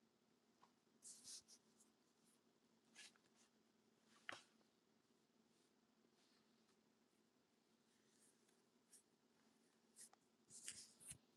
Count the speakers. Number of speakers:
0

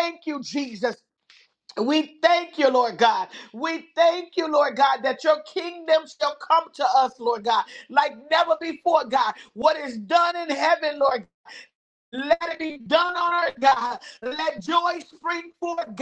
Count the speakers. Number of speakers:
1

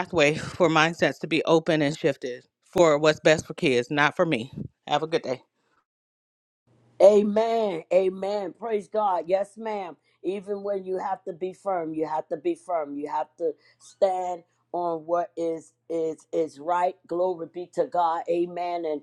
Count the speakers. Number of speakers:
2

